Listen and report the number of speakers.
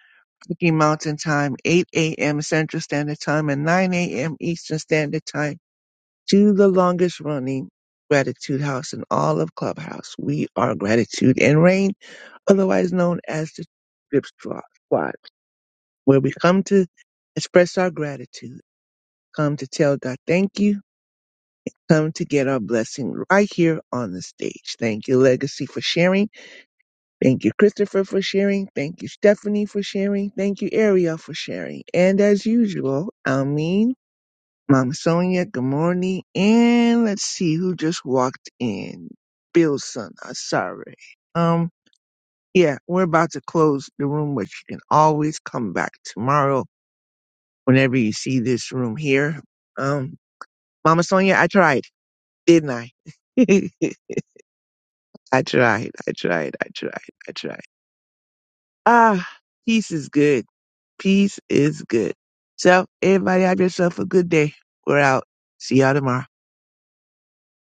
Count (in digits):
1